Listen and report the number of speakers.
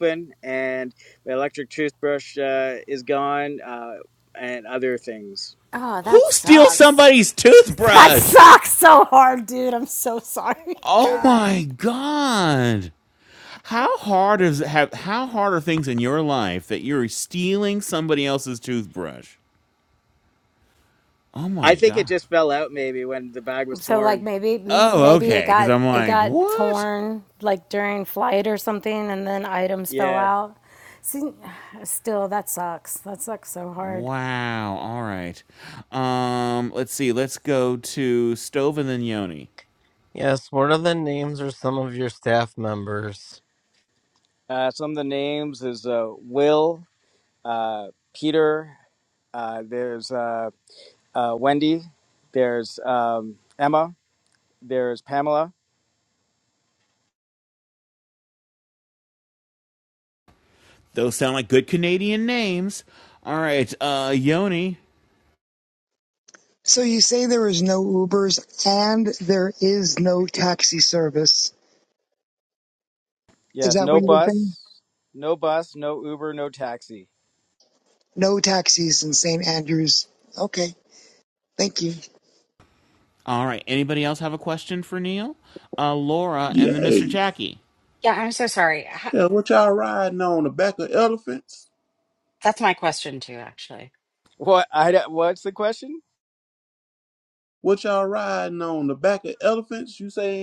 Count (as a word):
seven